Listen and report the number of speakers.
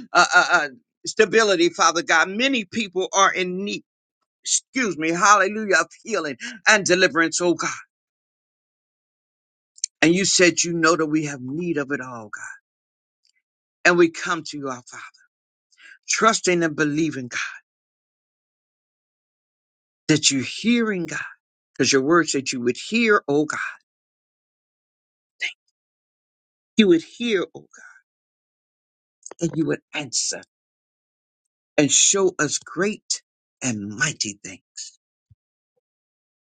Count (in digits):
1